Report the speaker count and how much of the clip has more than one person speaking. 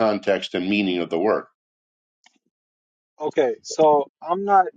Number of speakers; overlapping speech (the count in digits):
2, no overlap